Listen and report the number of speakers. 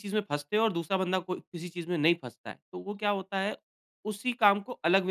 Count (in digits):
1